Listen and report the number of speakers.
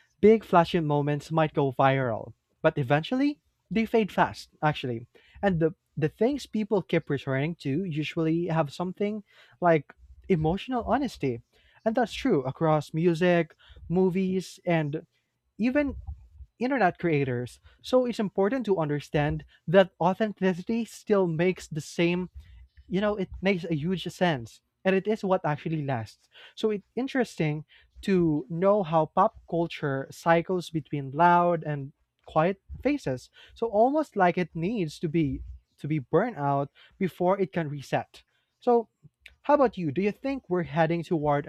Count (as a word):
one